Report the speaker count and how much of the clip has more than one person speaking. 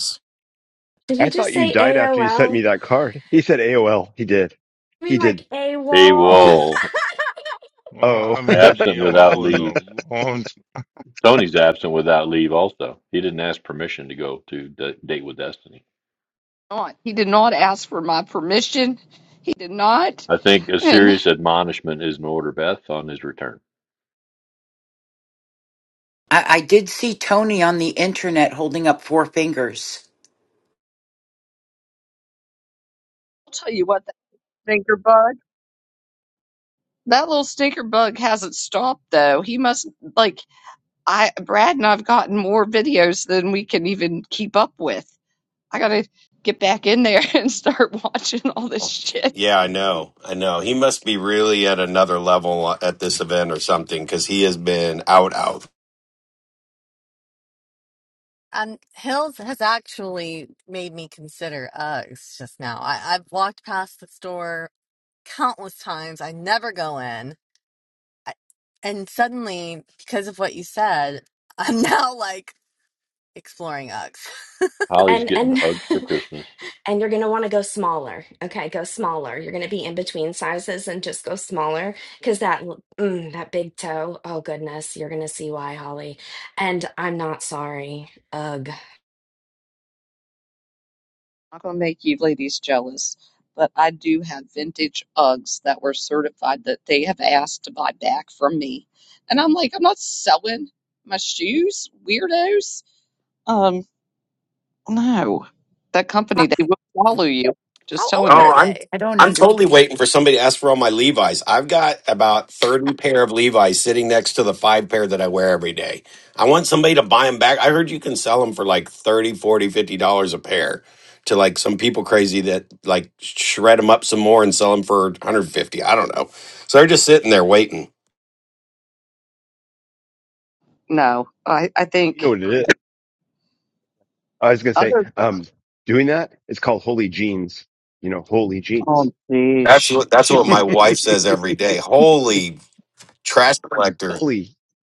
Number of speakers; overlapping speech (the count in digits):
8, about 5%